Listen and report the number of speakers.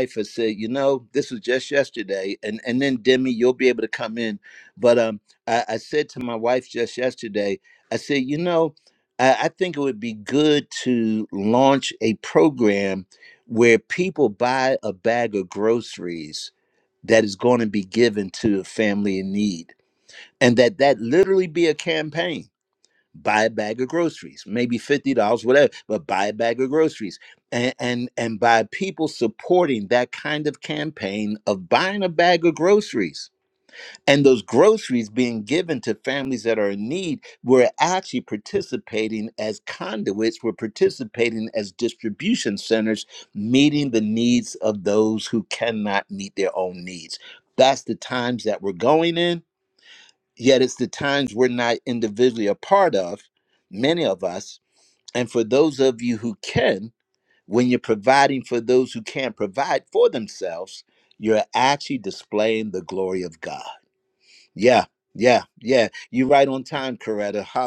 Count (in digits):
1